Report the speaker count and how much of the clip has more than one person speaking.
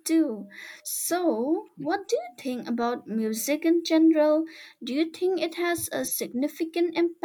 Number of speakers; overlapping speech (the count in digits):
1, no overlap